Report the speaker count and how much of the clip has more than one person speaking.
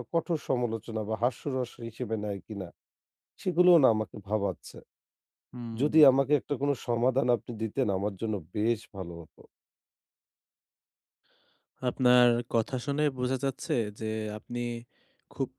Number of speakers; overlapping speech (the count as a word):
two, about 1%